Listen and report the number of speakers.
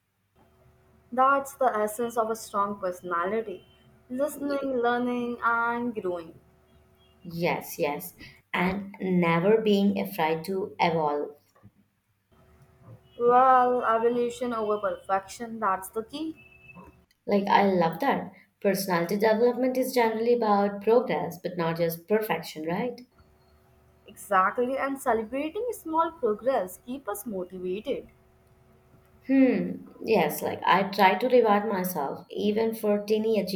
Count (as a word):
two